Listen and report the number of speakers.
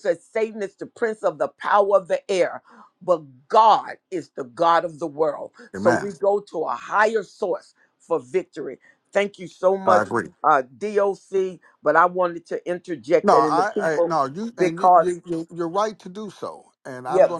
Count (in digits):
2